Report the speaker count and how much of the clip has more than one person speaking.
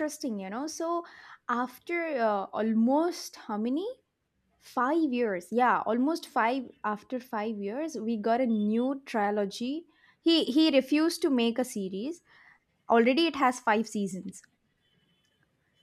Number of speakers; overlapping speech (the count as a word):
one, no overlap